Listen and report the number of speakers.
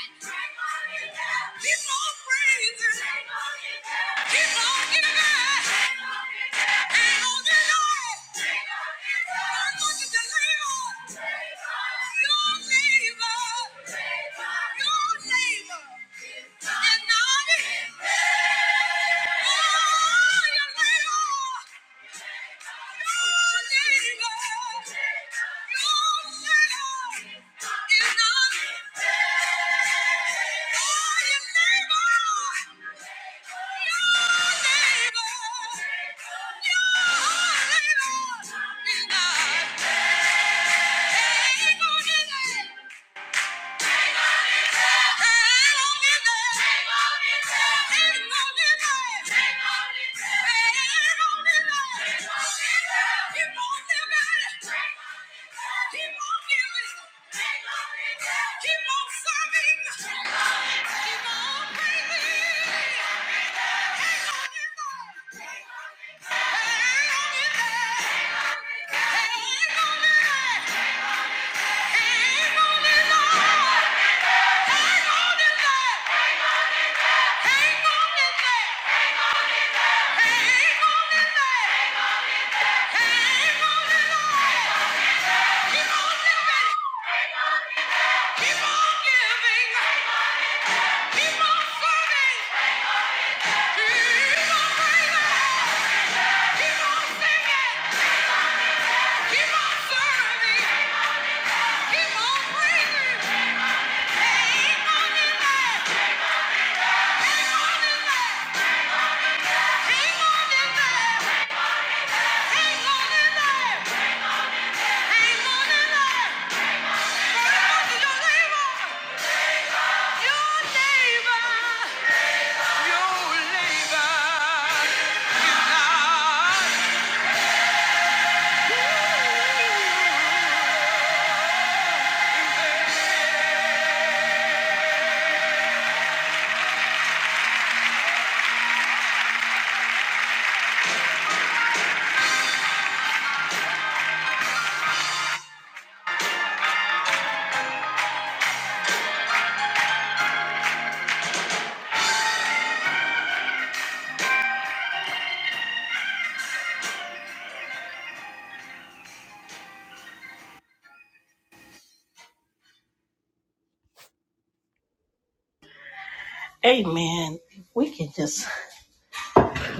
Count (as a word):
two